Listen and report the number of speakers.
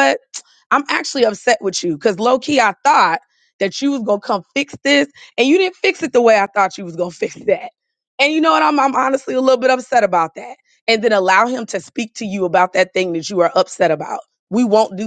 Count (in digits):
1